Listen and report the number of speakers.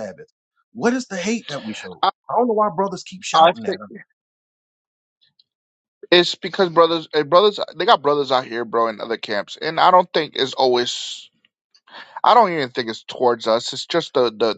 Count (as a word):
two